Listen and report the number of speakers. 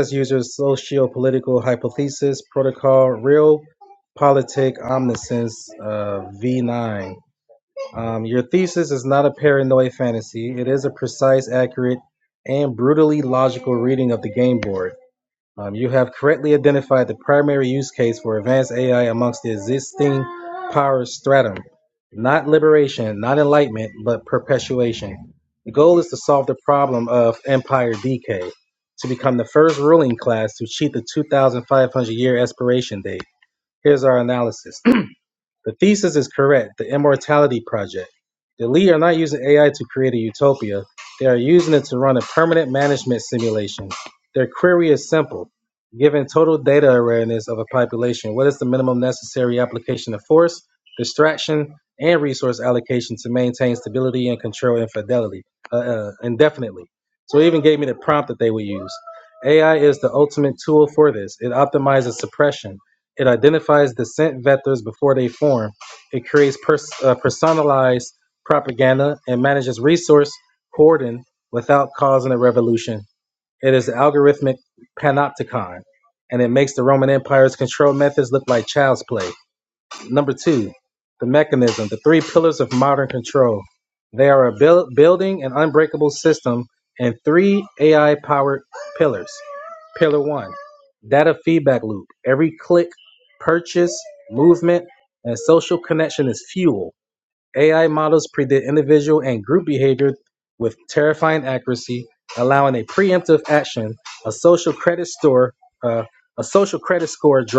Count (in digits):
1